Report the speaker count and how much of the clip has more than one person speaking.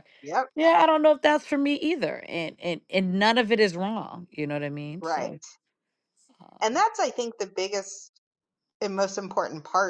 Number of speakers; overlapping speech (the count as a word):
two, about 3%